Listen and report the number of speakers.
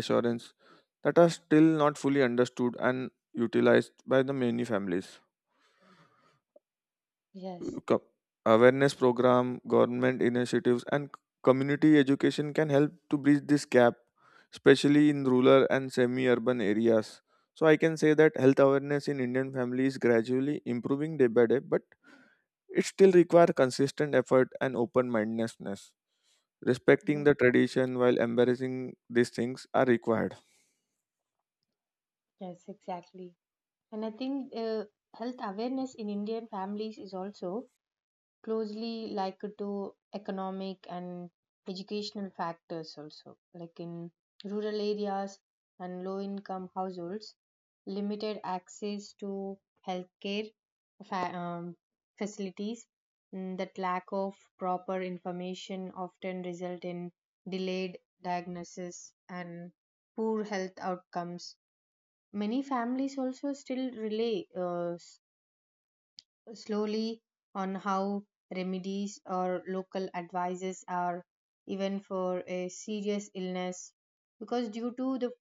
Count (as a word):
two